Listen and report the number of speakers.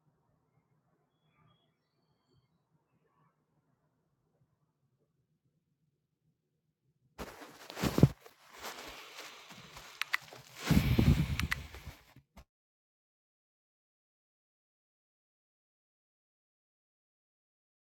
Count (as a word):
zero